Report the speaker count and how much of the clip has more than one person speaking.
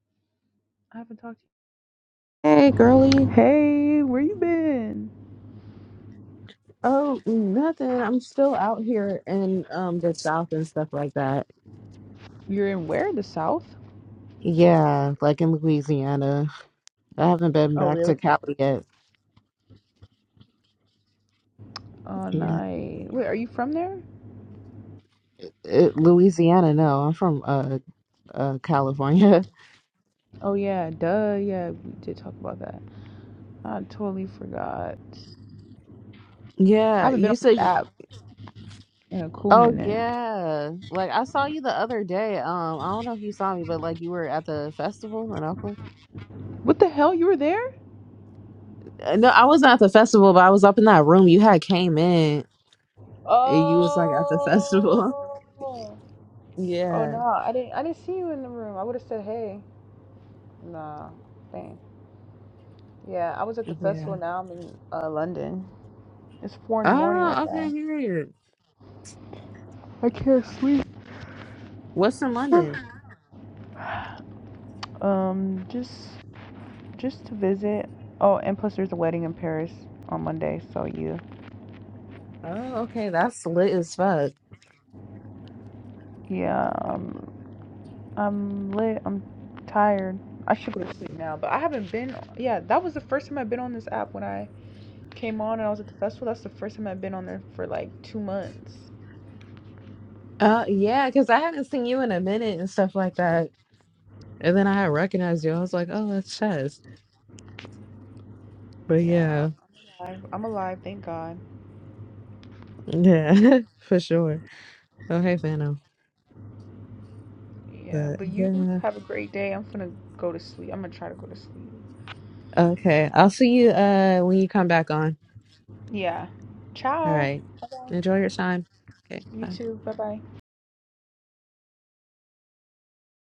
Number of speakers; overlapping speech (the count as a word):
two, about 5%